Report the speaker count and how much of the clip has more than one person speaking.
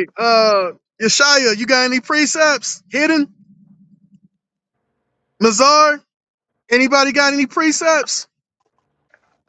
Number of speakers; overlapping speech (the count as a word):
one, no overlap